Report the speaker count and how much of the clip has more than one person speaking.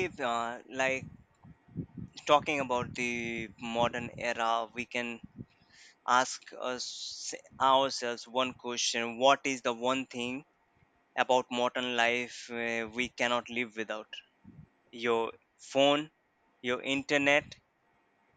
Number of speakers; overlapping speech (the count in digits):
1, no overlap